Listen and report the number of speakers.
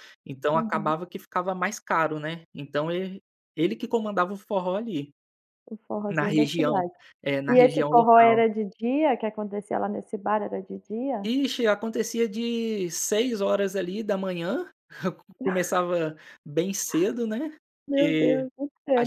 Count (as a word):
two